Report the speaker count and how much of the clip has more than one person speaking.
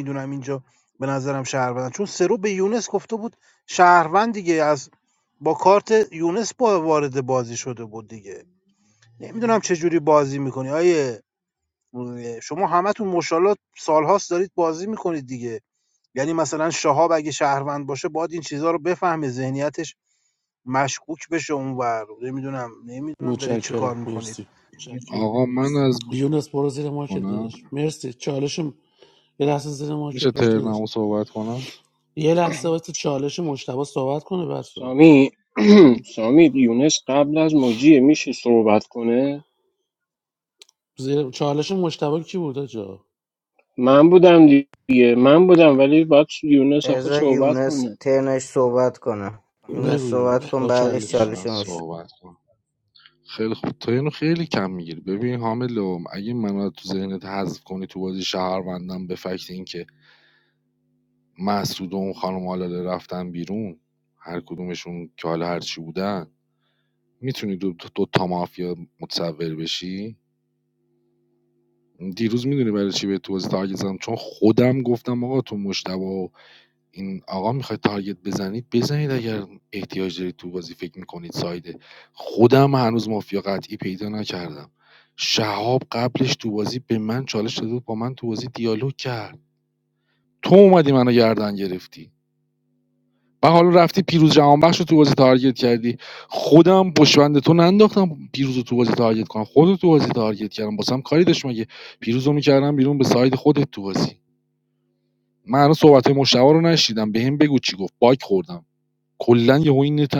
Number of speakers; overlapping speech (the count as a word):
five, about 5%